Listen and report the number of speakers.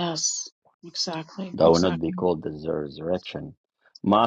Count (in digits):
2